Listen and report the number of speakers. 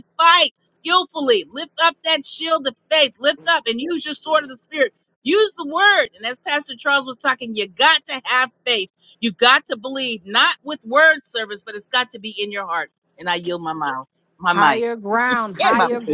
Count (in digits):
2